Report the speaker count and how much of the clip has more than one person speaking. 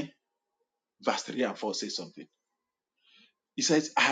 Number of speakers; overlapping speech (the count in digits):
1, no overlap